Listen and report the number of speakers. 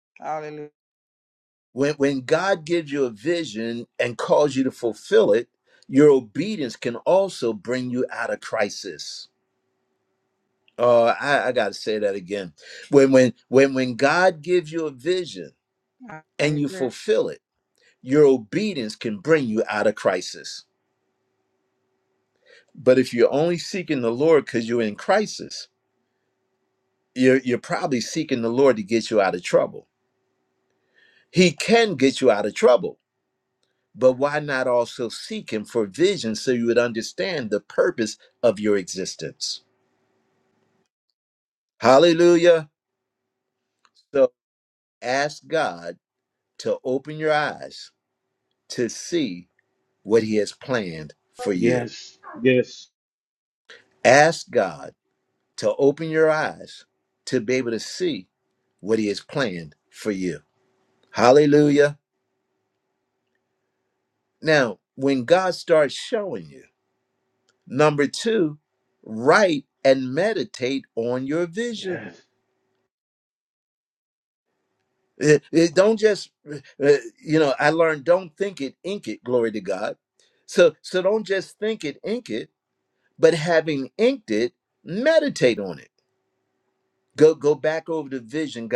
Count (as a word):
three